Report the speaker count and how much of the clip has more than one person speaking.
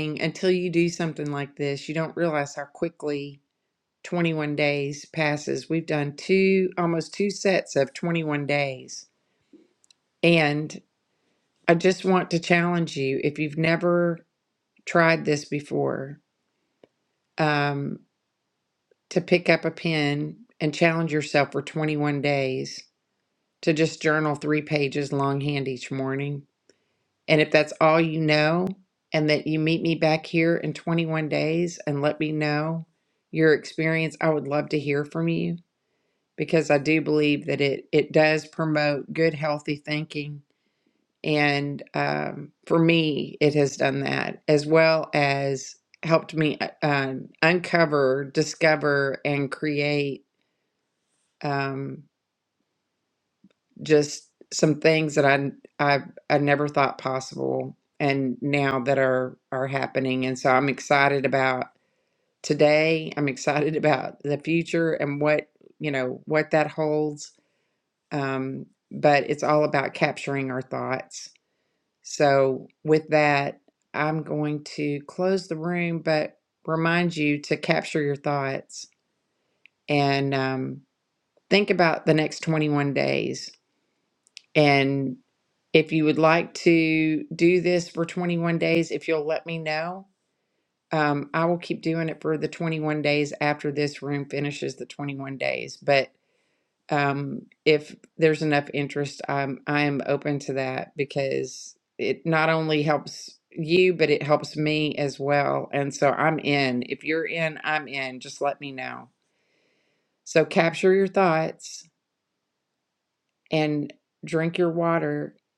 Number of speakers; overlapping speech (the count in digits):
1, no overlap